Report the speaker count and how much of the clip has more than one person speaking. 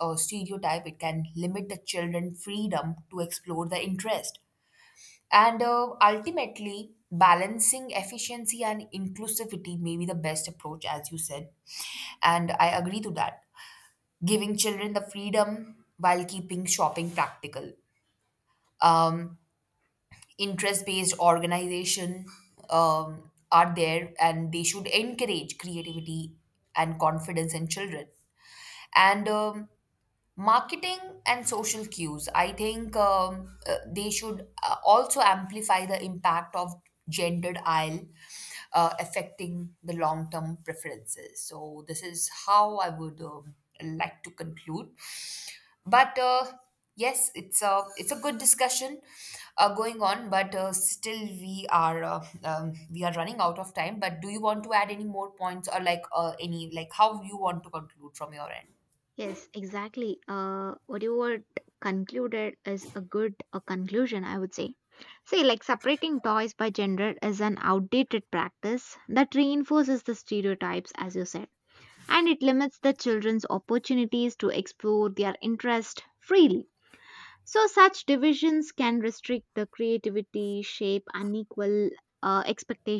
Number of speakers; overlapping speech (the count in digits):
2, no overlap